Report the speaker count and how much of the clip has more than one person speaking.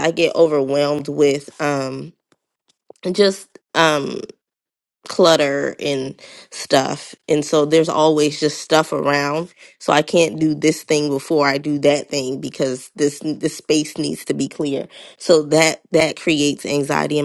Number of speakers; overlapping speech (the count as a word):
one, no overlap